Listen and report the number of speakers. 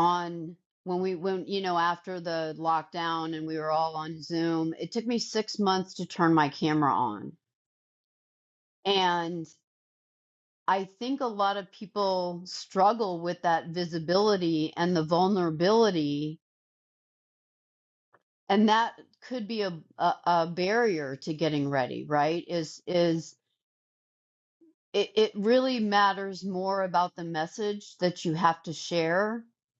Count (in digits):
1